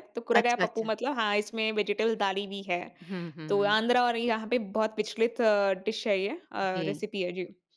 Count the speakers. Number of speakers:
two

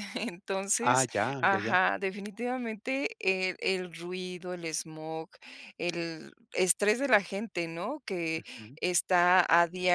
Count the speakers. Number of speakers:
two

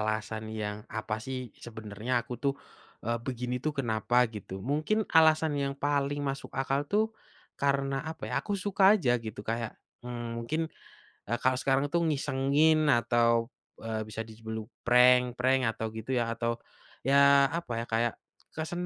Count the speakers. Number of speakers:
one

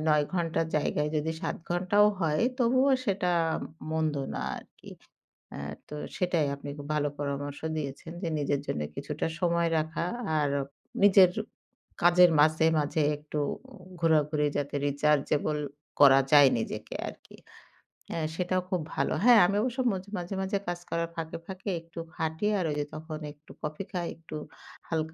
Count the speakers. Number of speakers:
one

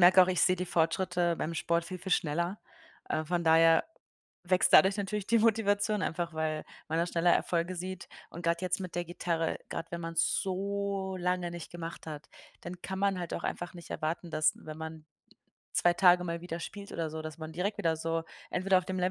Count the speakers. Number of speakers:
one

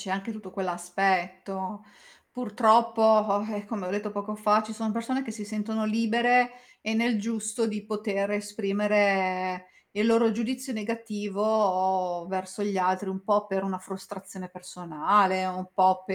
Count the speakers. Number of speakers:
one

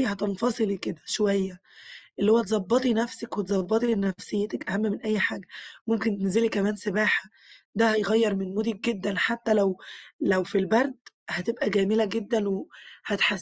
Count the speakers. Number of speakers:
one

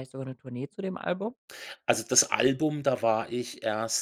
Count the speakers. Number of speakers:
two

